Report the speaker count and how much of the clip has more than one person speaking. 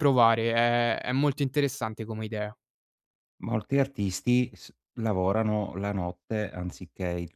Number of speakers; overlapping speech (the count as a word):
two, no overlap